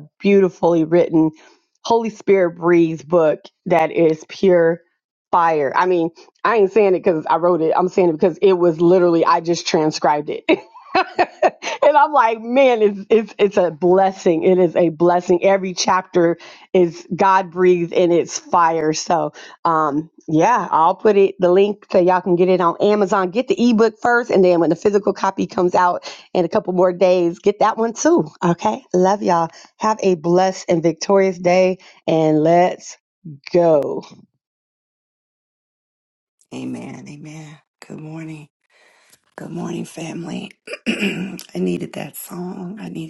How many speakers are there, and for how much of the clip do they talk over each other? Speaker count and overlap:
2, no overlap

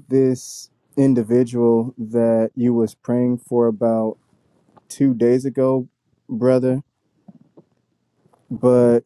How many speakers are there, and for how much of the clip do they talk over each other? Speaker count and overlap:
1, no overlap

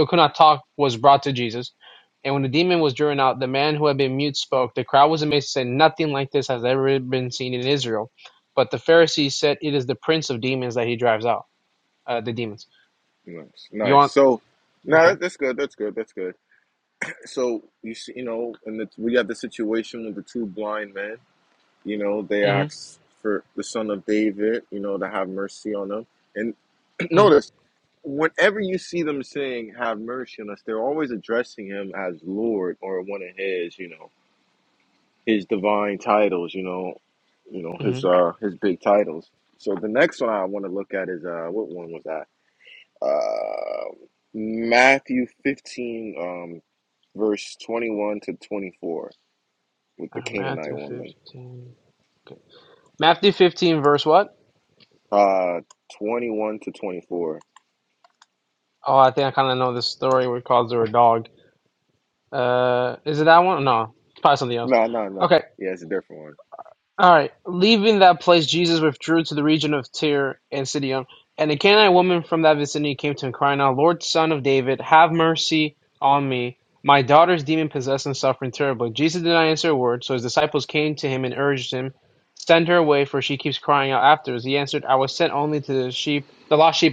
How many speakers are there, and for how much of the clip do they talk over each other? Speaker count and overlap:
2, about 3%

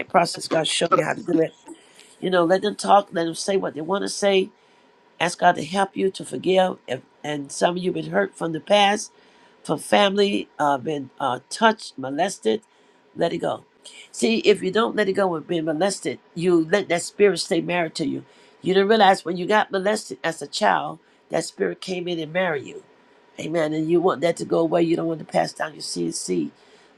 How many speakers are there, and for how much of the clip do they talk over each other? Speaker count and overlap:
1, no overlap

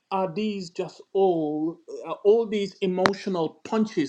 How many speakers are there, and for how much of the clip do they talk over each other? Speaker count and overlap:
1, no overlap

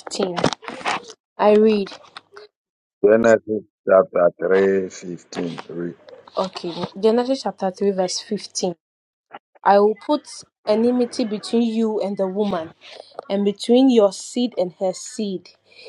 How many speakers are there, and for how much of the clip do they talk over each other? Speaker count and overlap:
2, no overlap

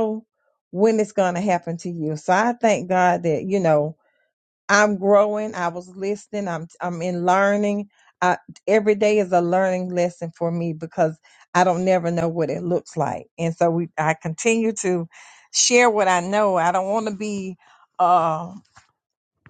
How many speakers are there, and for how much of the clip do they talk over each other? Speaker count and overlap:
1, no overlap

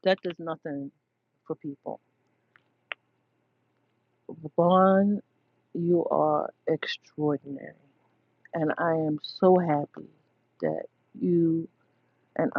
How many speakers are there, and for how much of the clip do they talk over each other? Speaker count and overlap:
1, no overlap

